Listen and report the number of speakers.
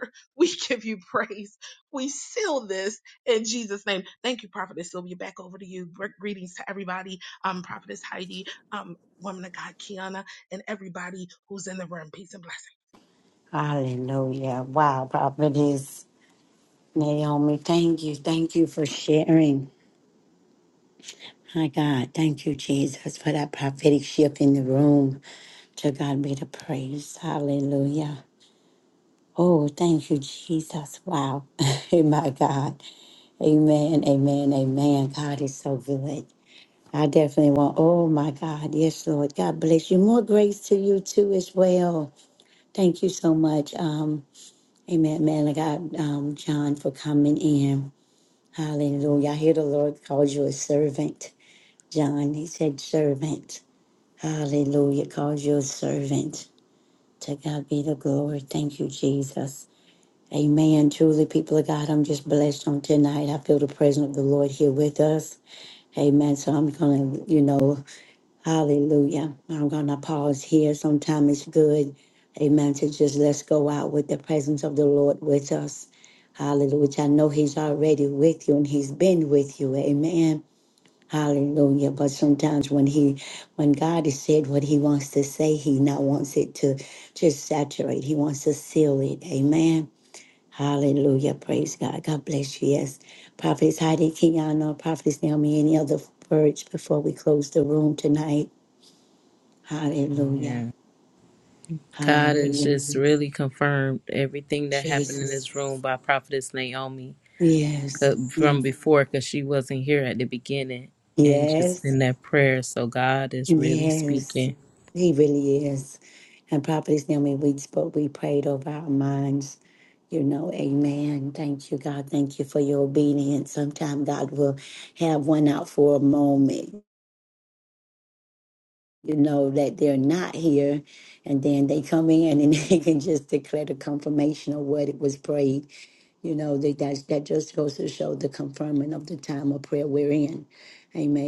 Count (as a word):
three